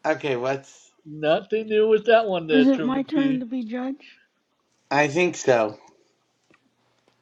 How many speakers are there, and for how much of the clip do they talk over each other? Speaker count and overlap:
3, about 10%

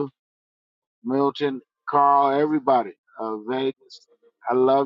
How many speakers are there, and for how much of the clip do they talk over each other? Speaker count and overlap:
1, no overlap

